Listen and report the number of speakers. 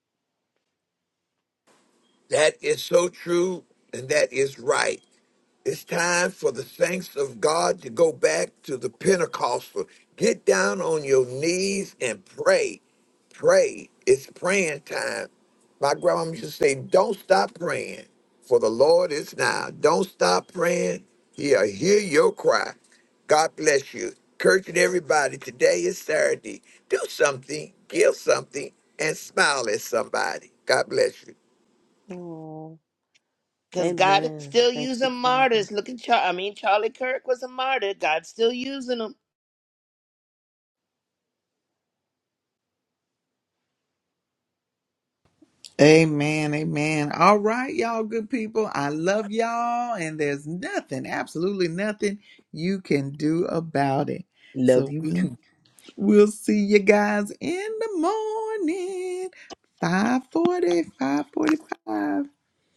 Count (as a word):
four